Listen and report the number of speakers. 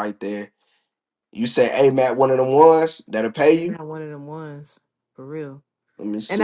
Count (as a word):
two